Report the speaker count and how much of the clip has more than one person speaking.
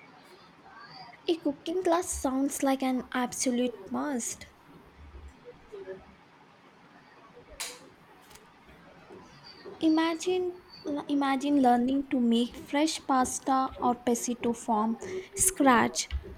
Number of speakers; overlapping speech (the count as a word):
one, no overlap